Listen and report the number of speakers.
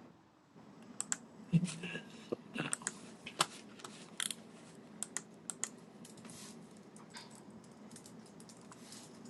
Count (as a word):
zero